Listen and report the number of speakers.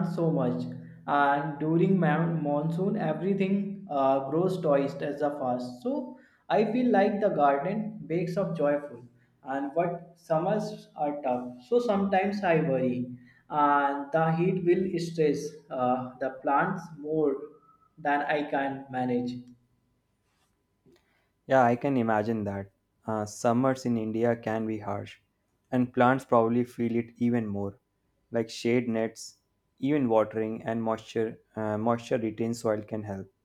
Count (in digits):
2